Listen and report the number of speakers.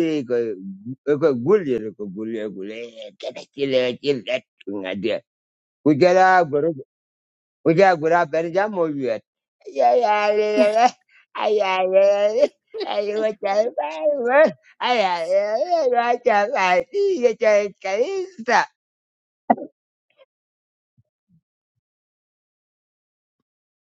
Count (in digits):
1